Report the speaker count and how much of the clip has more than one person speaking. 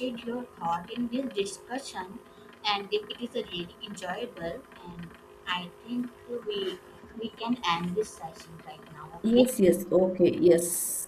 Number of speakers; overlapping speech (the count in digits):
2, about 3%